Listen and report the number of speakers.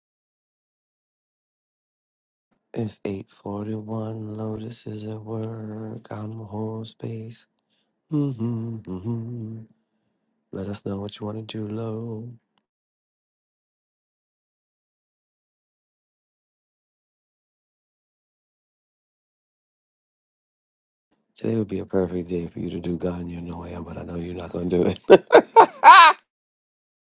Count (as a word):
one